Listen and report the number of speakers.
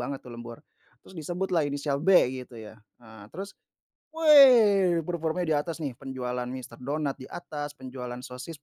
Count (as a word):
one